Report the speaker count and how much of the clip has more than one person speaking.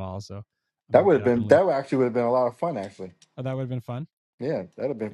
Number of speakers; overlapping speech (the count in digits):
2, about 13%